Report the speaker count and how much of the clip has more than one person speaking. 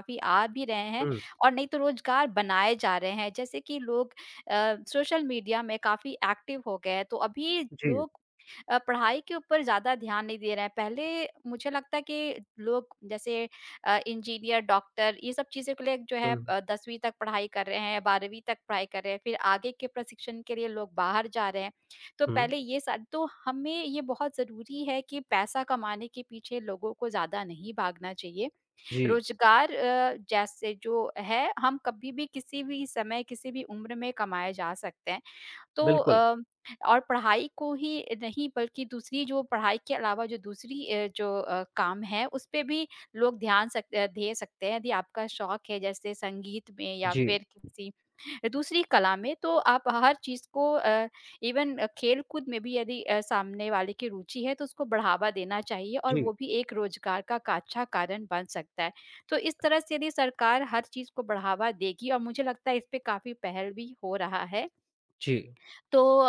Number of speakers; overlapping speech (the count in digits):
2, about 3%